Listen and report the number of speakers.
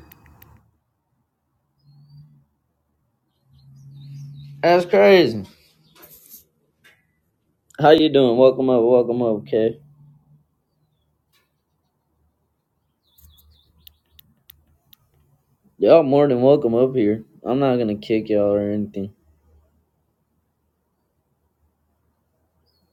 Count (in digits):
1